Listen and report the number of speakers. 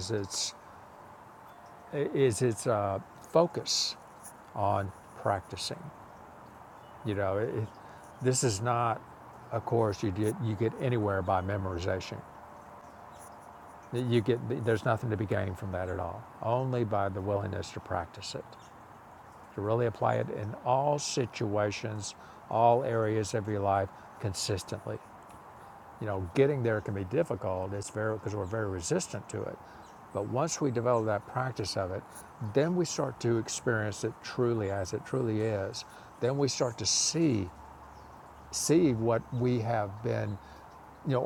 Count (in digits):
1